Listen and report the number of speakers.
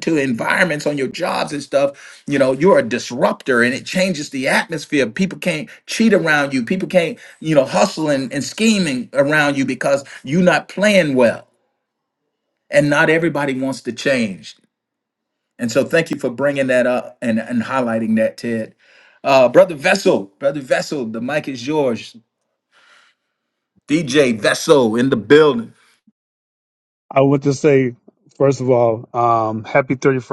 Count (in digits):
2